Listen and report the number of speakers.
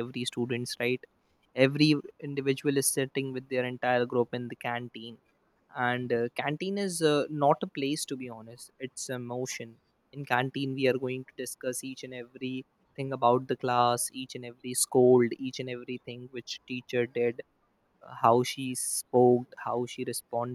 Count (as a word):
one